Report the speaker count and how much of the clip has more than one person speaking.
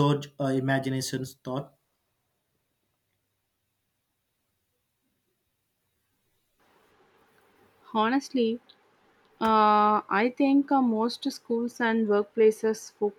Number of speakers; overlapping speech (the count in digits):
2, no overlap